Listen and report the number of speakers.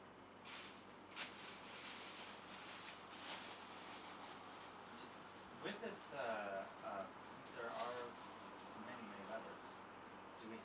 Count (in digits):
1